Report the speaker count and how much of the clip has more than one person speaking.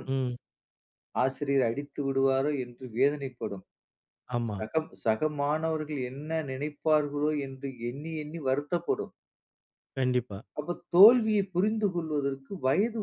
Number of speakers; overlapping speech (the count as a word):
two, under 1%